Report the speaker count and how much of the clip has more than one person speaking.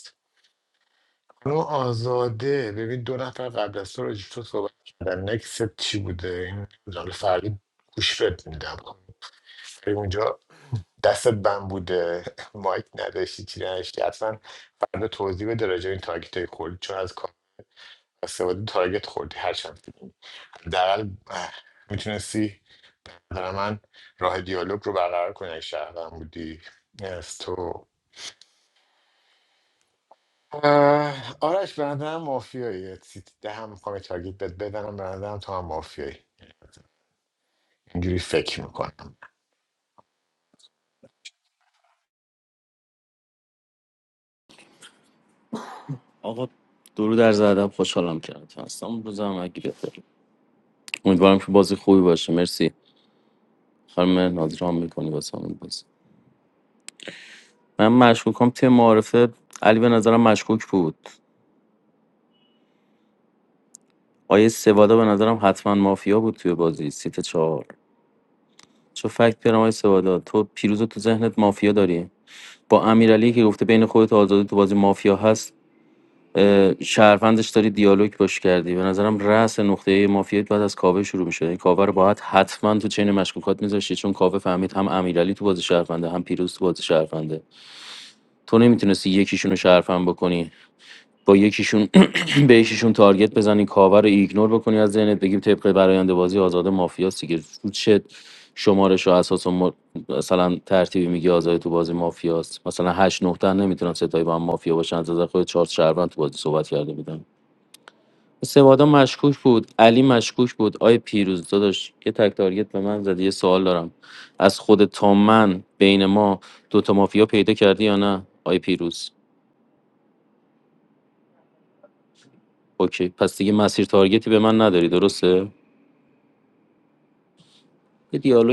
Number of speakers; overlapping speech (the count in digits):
2, no overlap